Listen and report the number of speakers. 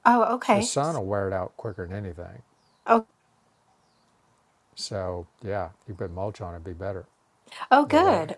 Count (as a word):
two